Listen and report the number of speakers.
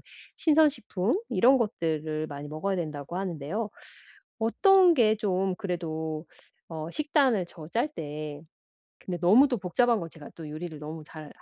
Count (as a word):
one